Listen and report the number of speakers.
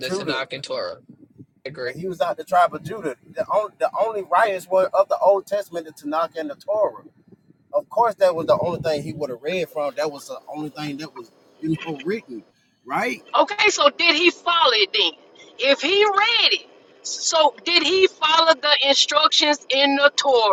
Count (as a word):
three